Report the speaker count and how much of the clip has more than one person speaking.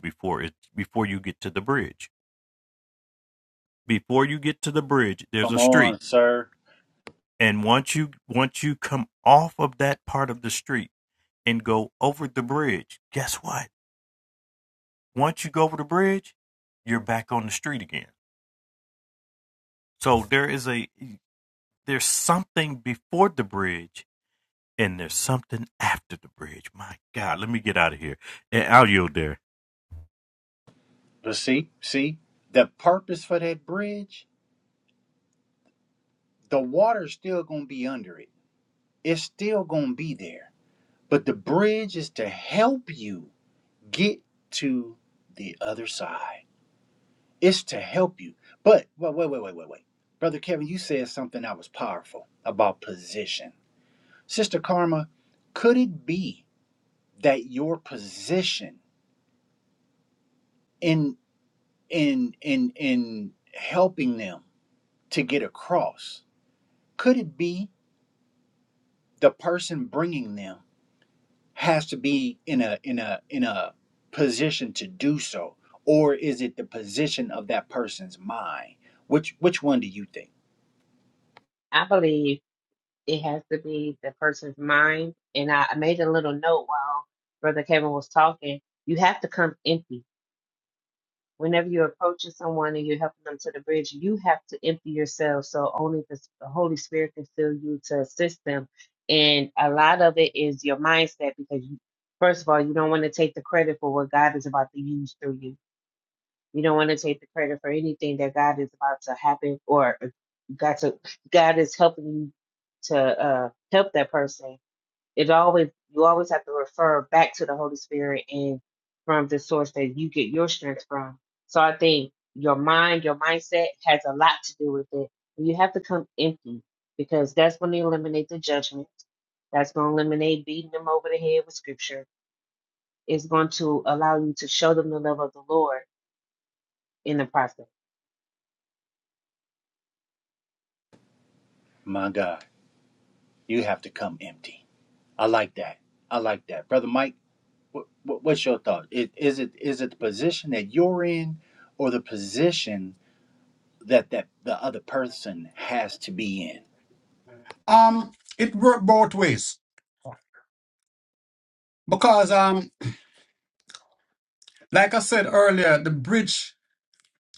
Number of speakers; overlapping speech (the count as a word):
four, under 1%